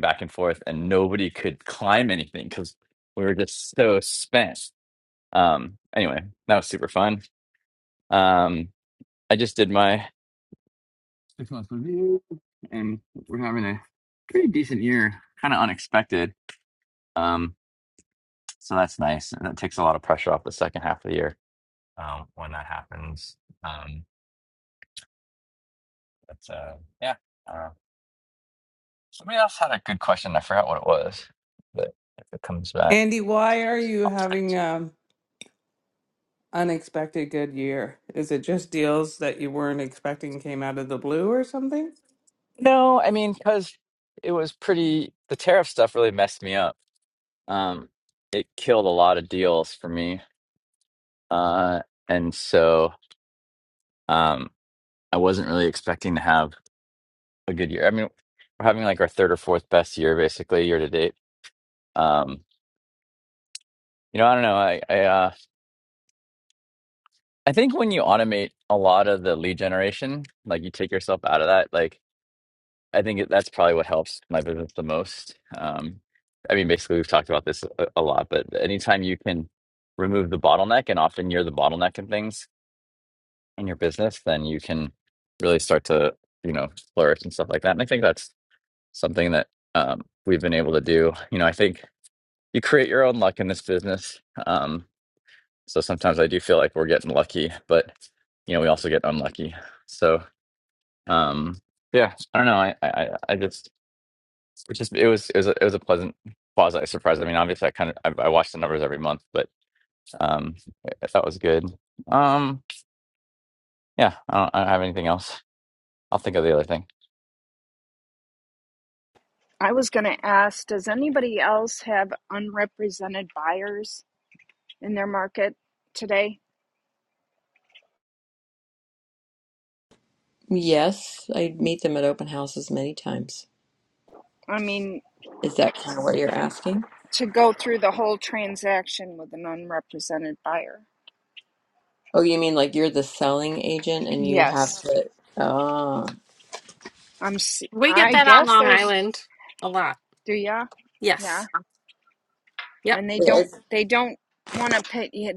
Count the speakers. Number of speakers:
five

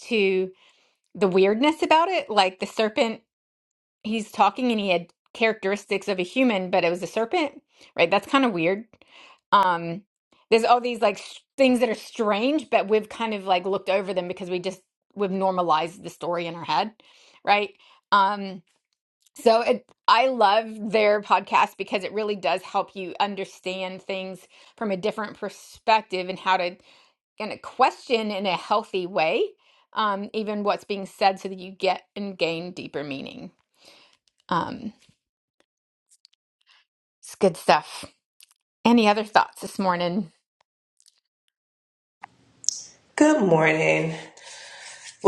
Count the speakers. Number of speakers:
two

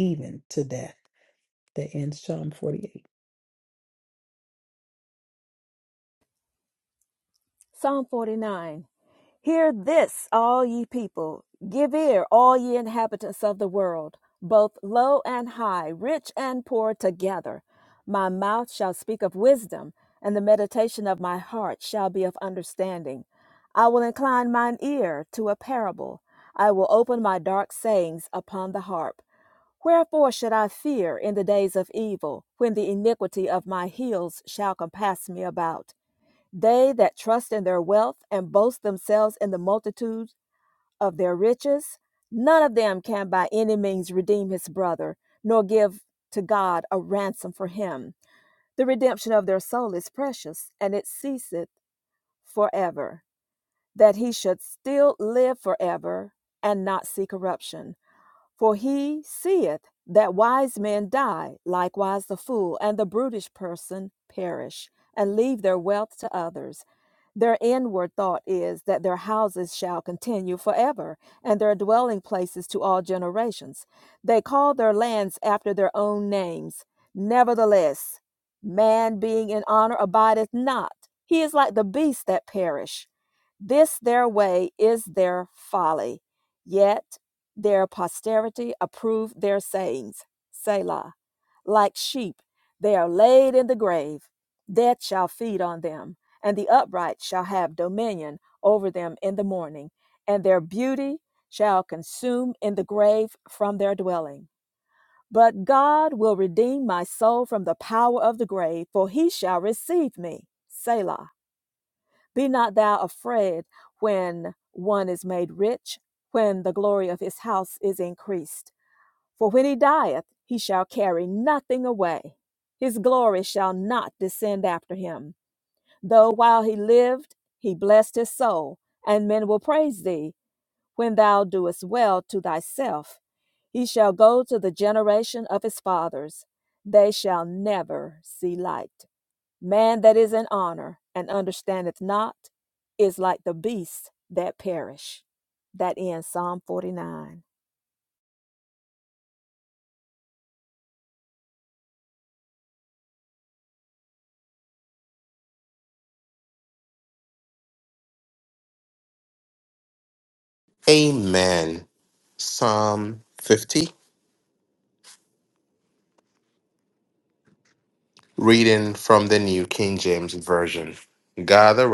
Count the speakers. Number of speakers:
three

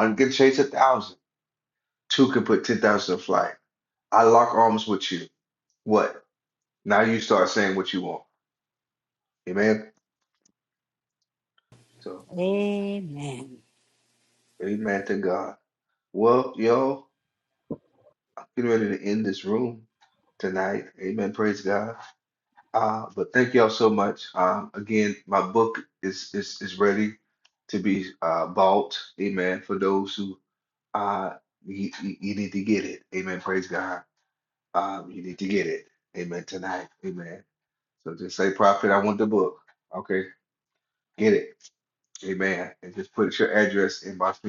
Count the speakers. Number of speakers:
two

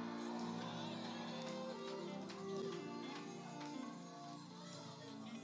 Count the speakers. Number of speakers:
zero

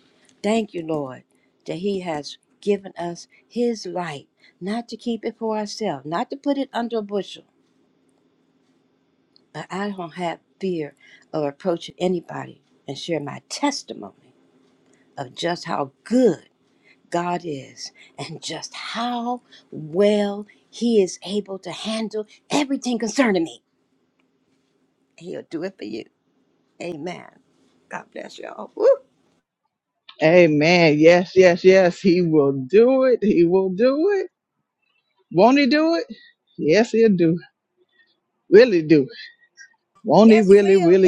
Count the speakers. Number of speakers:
two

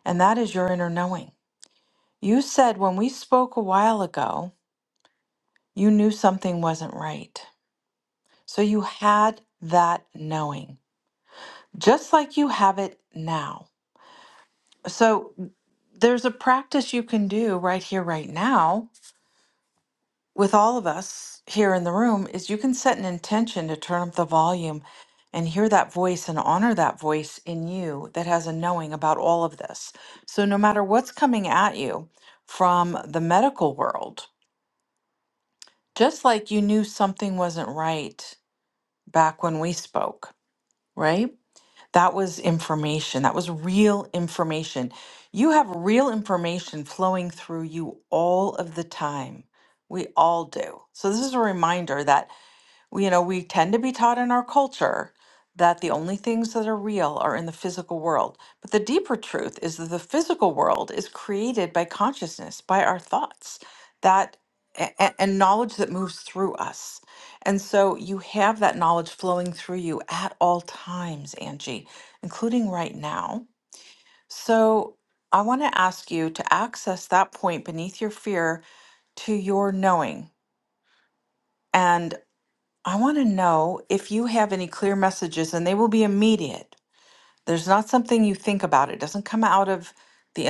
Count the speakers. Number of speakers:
one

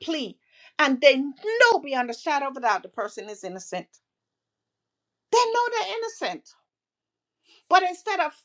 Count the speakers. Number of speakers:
one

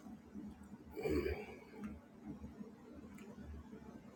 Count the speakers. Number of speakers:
zero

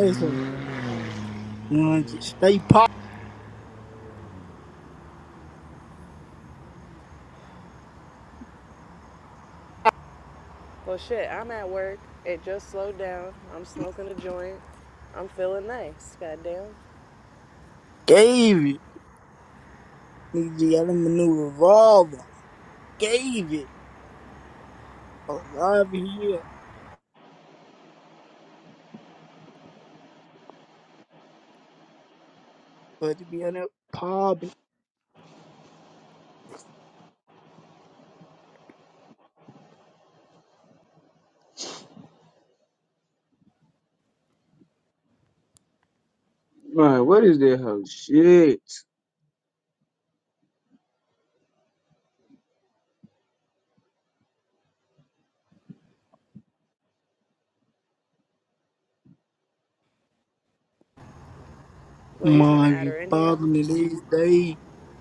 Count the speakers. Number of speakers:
three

